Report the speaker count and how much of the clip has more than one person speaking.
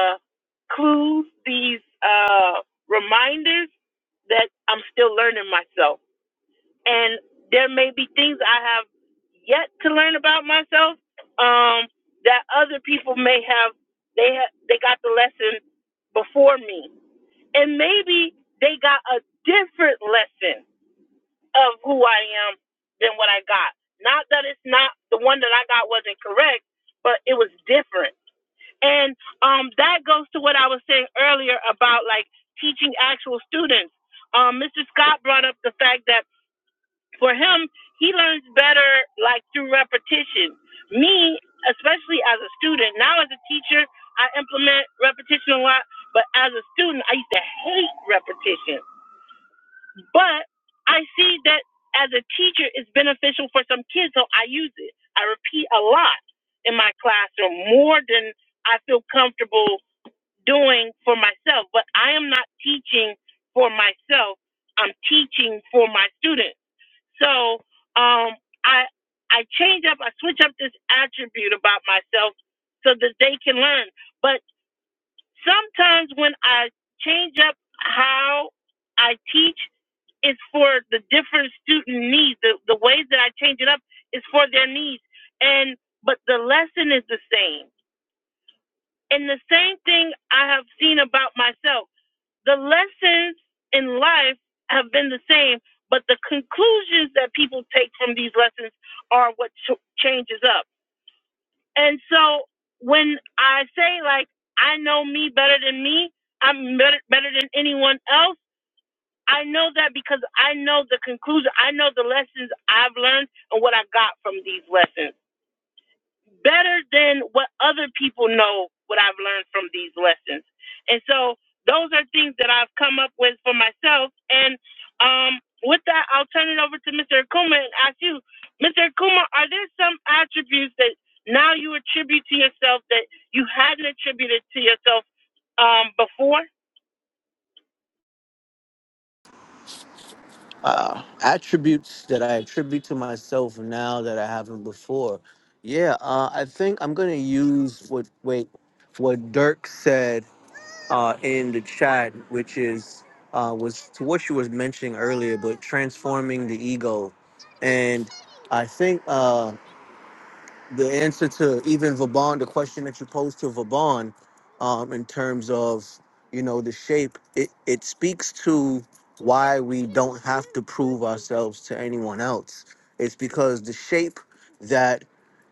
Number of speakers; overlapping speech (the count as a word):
two, no overlap